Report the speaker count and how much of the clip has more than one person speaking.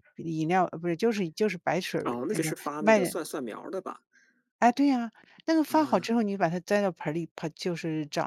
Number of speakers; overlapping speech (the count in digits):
2, about 17%